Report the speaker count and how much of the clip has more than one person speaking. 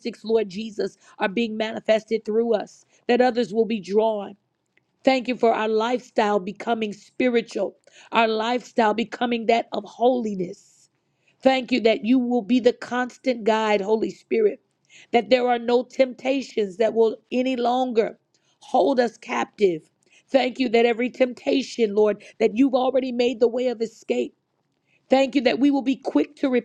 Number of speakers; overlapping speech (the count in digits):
1, no overlap